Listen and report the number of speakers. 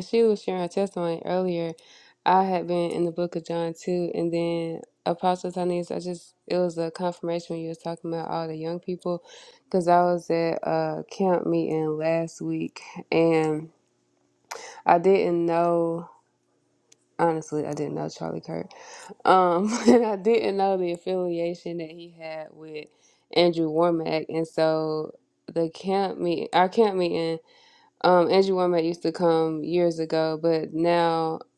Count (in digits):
1